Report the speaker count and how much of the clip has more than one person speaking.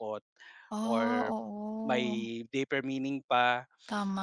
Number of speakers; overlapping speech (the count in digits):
2, about 21%